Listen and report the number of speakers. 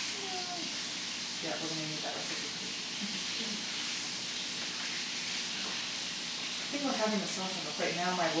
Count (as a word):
one